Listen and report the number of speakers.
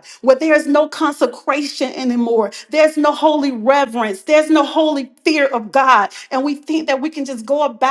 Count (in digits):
1